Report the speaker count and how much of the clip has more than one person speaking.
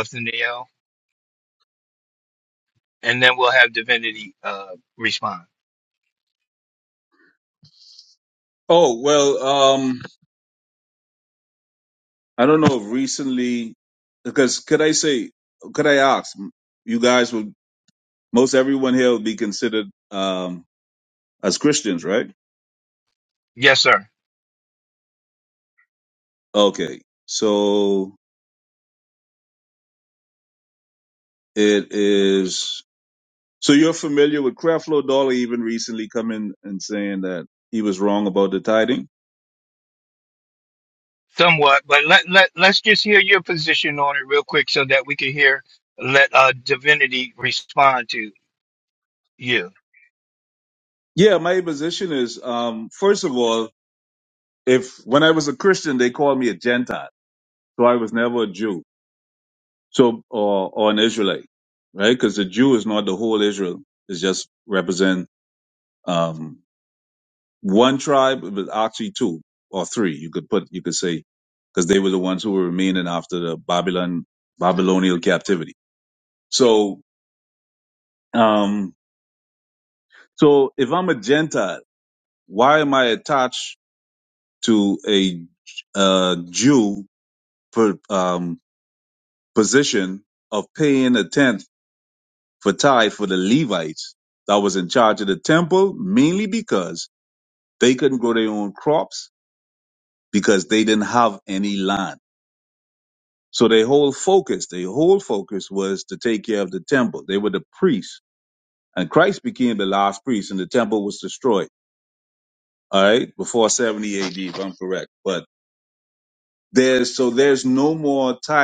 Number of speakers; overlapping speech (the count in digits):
2, no overlap